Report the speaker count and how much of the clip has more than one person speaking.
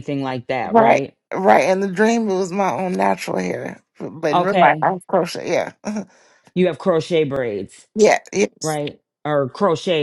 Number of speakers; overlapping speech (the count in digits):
2, about 10%